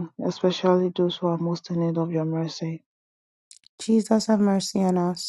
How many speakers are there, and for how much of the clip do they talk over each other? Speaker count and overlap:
2, no overlap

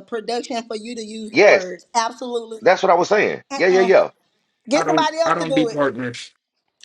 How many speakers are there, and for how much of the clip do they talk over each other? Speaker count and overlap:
3, about 26%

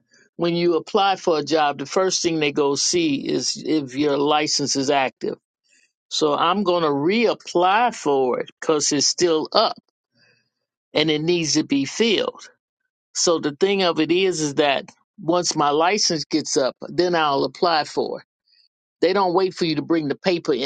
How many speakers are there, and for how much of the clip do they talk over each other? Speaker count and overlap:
1, no overlap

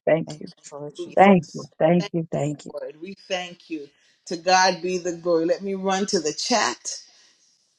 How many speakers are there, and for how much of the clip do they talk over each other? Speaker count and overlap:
3, about 9%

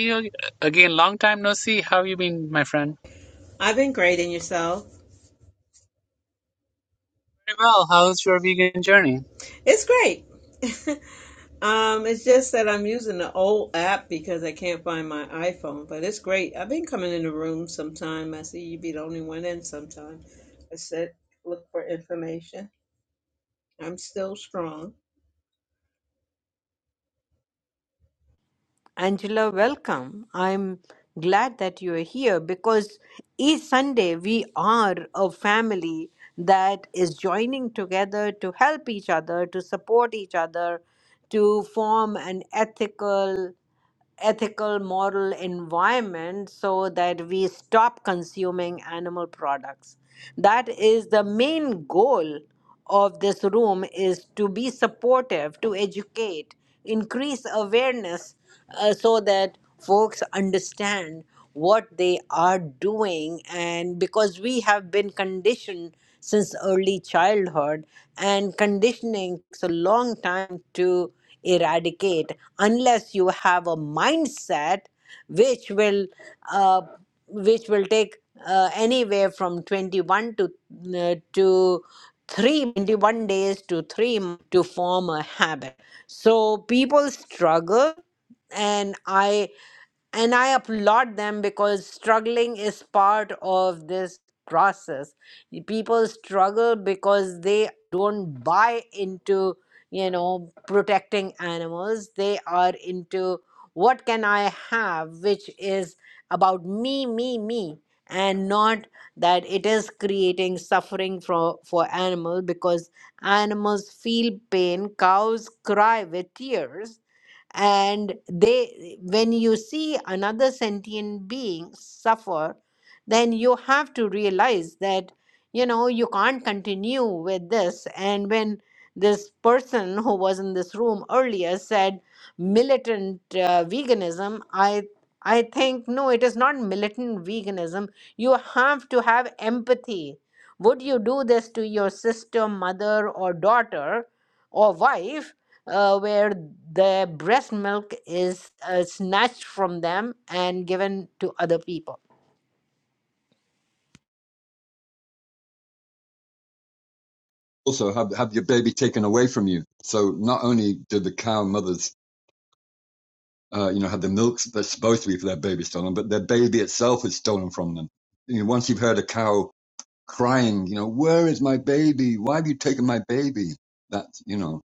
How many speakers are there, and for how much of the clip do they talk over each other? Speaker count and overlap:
4, no overlap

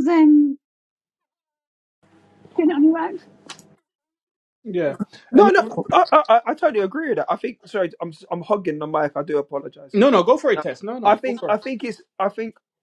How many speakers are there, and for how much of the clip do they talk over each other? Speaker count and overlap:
3, about 7%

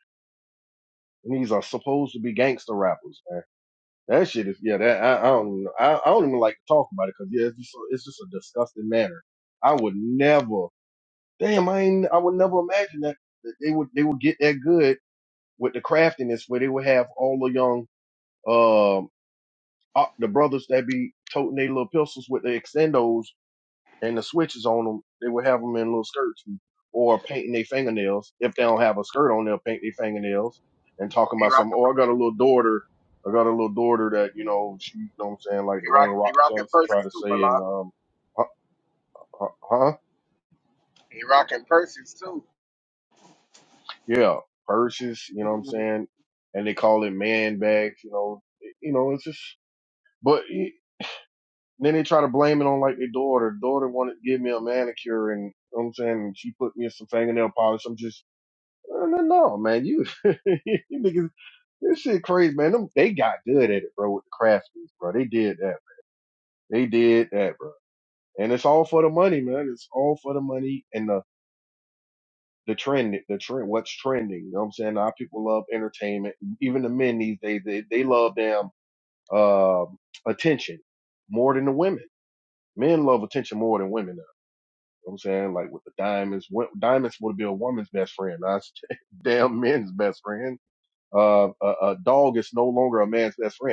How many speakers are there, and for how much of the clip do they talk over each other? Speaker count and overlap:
2, about 2%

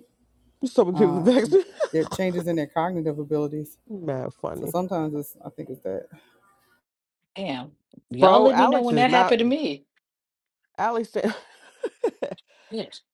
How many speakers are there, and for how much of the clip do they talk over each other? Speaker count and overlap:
3, about 13%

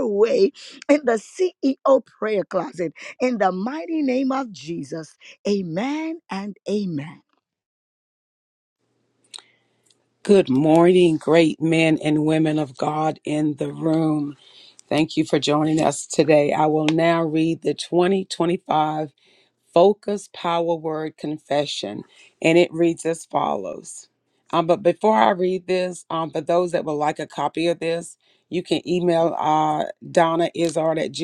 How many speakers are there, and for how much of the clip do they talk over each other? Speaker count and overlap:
2, no overlap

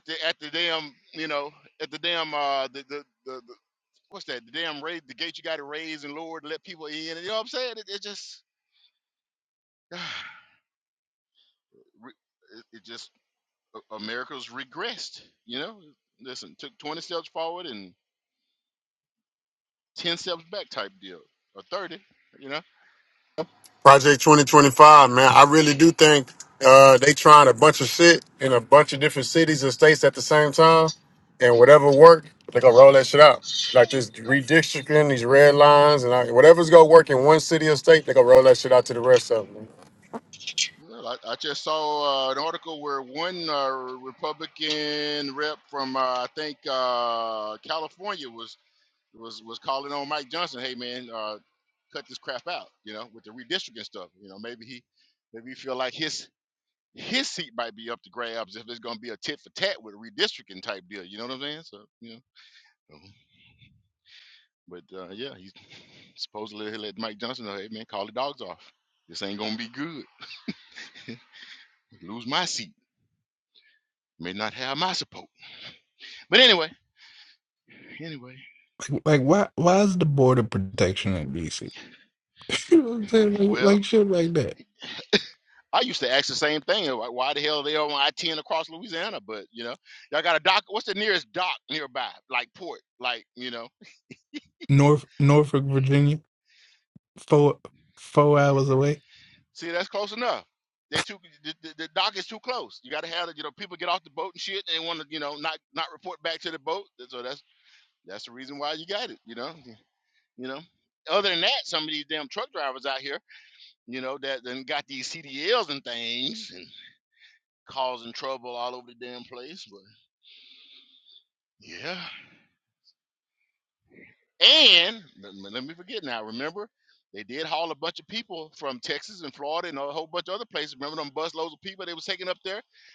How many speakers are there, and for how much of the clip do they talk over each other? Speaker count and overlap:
3, under 1%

